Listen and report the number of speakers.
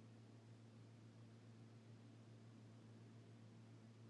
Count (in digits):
0